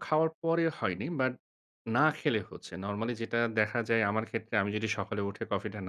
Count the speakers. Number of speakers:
1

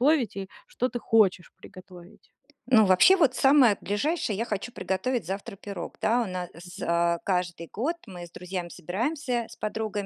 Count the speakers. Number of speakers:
2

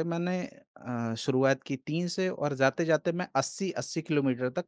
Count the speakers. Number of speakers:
1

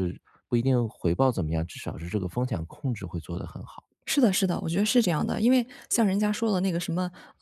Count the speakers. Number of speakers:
2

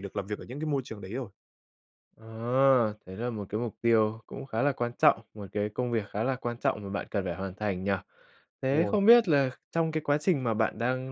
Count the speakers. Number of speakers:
2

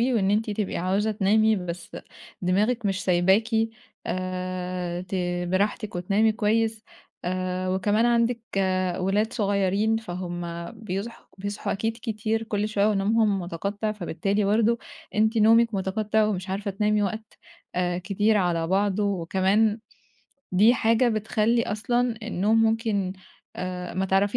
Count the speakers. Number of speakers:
1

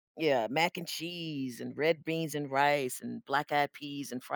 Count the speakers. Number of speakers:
1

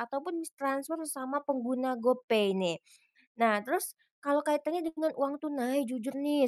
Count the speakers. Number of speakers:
1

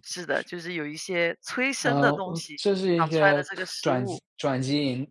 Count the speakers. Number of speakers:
2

